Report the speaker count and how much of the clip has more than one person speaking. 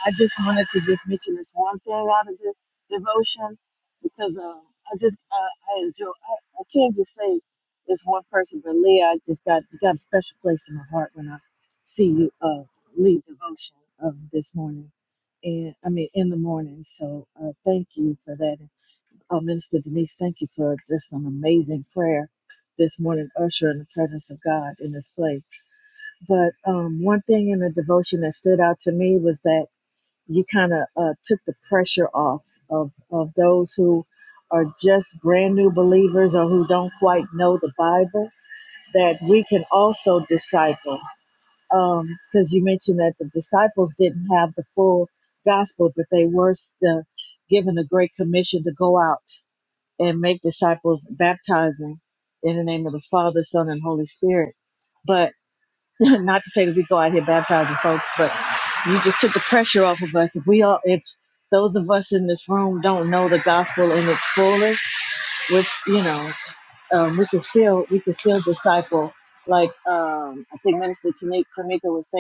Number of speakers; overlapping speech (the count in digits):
1, no overlap